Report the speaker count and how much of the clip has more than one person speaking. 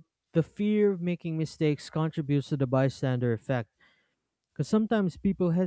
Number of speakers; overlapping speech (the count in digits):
1, no overlap